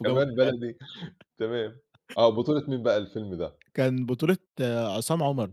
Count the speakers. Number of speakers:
two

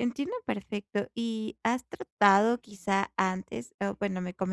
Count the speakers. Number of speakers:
one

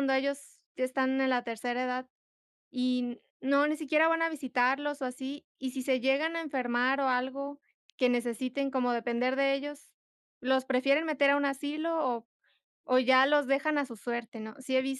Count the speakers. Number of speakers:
one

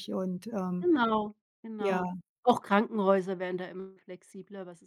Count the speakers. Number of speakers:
two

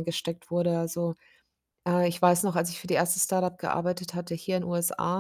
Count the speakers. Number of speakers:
one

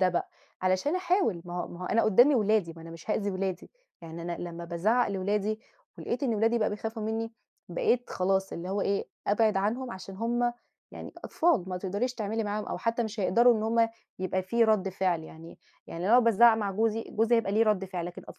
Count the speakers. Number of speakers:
one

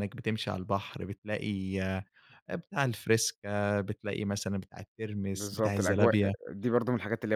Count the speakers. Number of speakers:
two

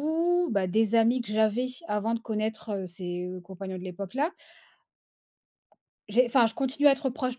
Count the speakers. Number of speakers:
one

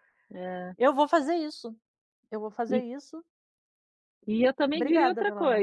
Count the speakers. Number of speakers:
two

